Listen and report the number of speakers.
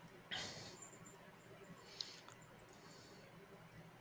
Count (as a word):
zero